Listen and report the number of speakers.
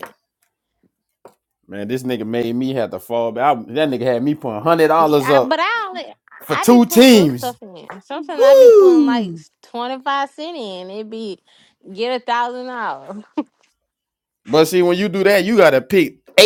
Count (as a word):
two